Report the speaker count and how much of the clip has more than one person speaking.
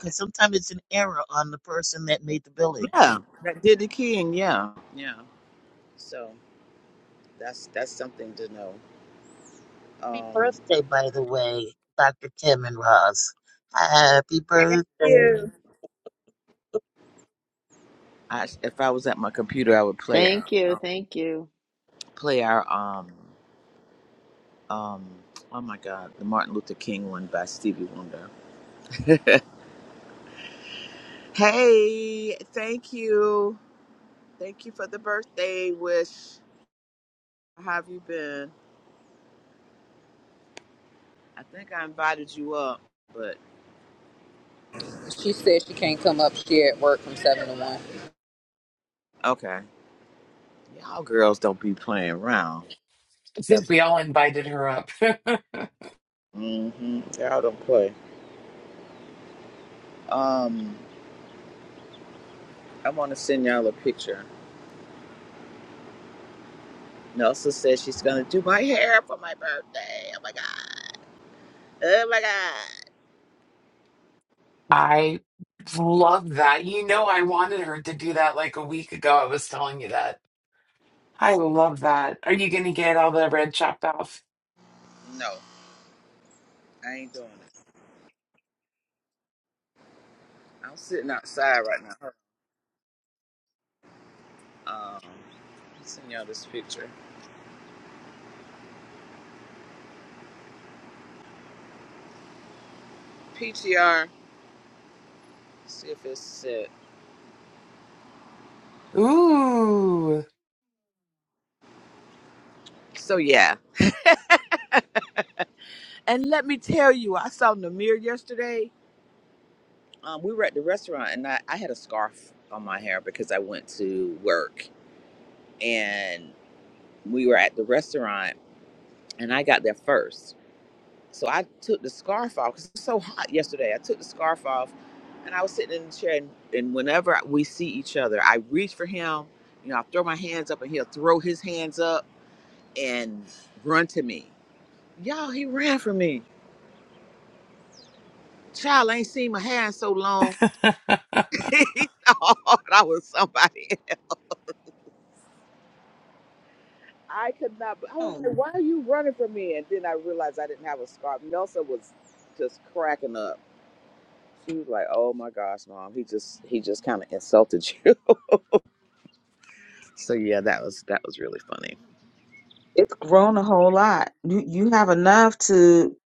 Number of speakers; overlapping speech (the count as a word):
six, about 1%